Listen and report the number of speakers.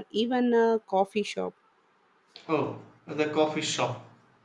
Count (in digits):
2